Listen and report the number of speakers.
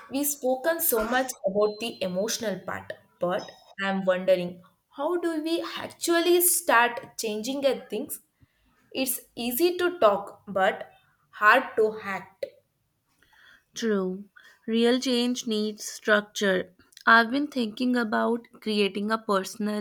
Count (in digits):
2